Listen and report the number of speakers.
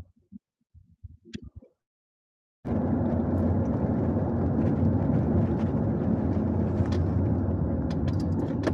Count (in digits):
0